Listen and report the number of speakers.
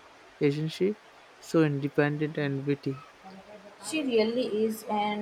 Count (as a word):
two